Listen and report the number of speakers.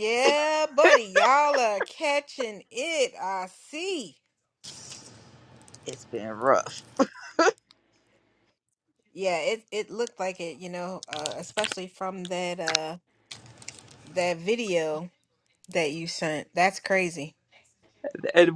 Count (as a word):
two